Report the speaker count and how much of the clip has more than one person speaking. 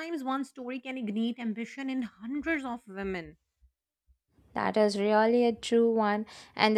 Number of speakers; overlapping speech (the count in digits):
2, no overlap